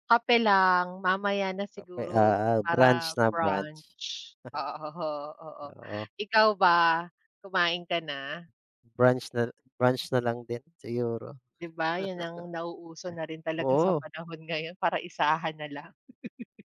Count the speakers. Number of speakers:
2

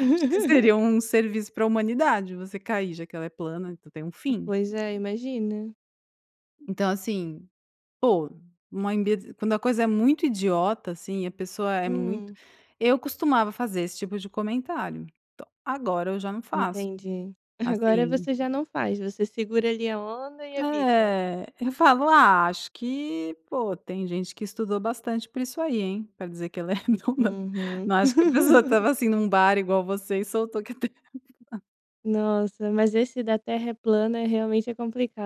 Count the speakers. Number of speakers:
2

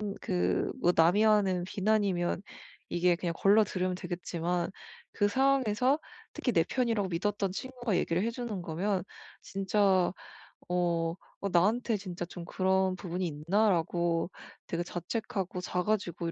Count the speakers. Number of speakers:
1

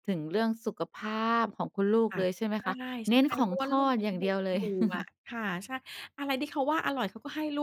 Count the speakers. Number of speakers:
2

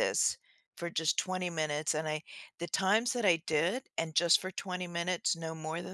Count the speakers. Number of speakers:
1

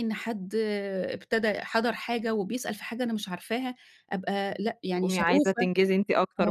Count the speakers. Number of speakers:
2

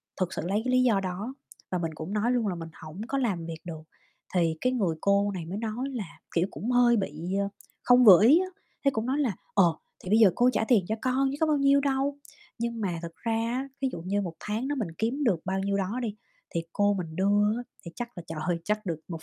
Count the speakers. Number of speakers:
1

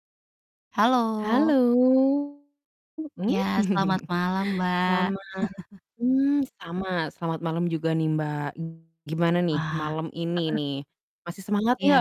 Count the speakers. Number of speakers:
2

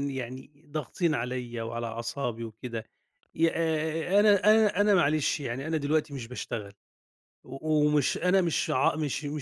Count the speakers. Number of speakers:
1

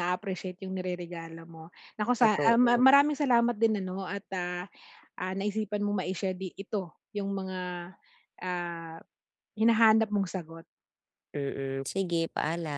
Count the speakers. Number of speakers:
2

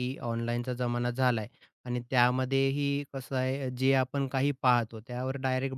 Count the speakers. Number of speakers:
1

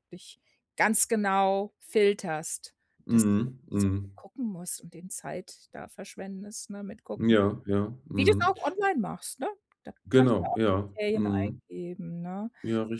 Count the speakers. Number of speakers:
2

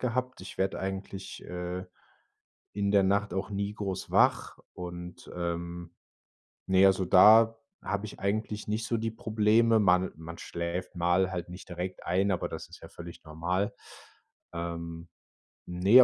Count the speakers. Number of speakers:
1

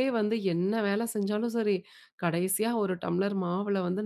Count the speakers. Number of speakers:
1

